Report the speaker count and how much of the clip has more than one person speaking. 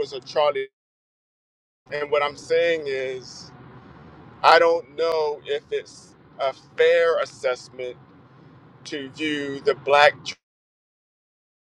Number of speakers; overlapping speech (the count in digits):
1, no overlap